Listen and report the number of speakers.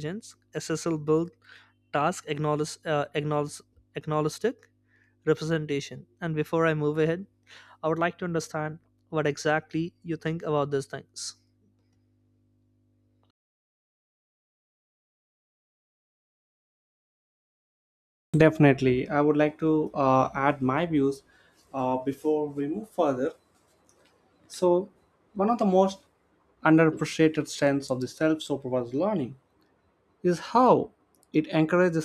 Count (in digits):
2